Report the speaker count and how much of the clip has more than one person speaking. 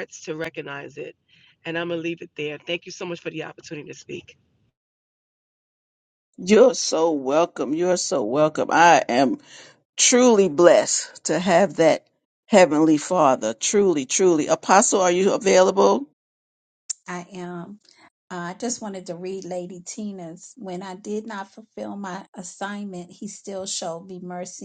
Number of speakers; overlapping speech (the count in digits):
3, no overlap